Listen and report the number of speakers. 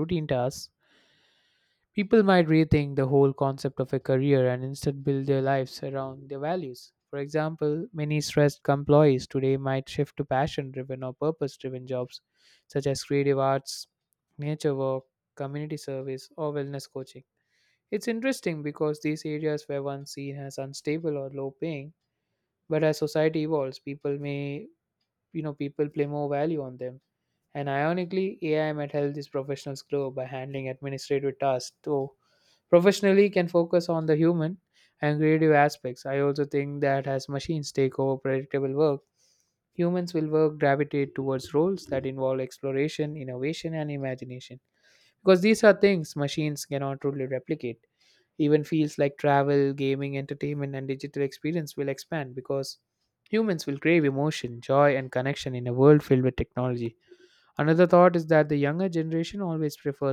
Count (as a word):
one